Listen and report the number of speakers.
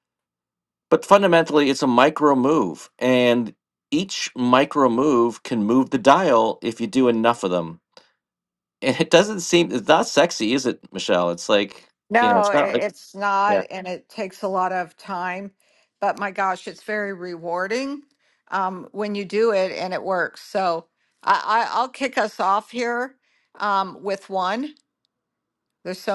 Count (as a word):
two